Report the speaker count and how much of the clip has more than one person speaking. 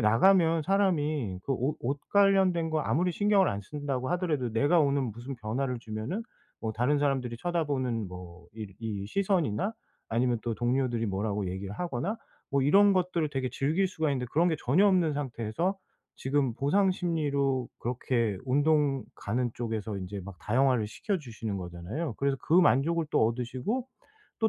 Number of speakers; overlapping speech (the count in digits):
1, no overlap